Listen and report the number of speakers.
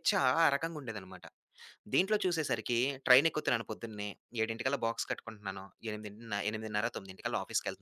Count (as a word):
one